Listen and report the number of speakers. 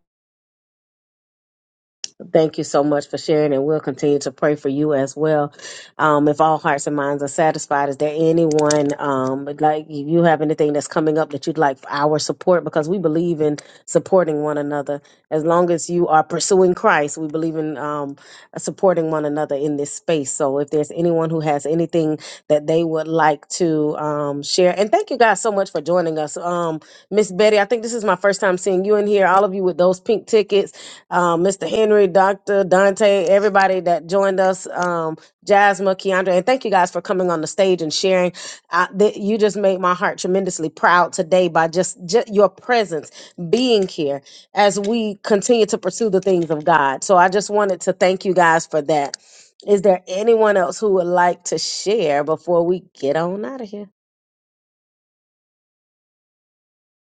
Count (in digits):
1